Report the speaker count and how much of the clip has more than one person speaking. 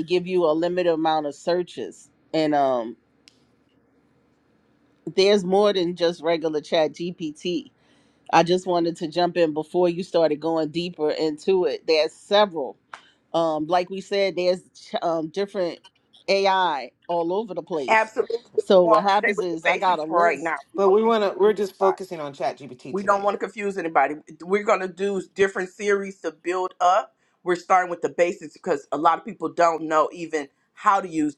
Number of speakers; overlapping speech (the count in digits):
3, about 9%